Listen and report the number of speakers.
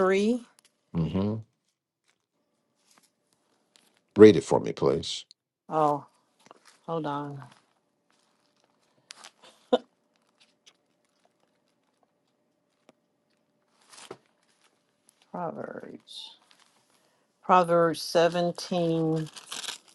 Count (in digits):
2